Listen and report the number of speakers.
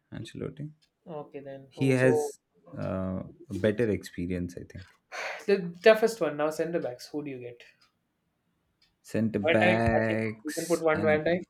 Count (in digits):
2